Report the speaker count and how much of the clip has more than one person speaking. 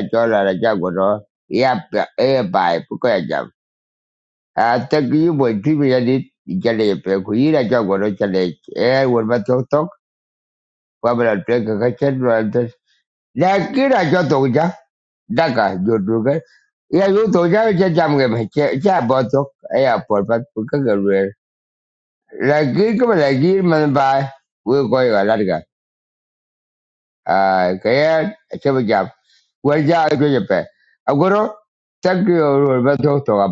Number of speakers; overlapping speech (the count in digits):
1, no overlap